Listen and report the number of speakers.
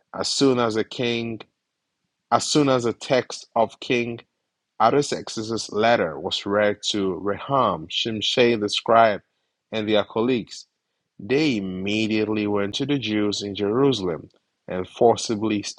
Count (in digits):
1